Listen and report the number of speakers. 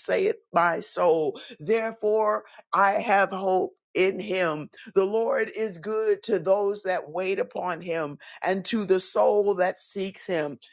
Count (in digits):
1